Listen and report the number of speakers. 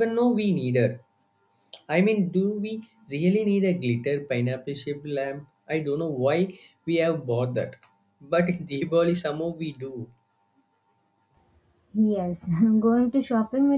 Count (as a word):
two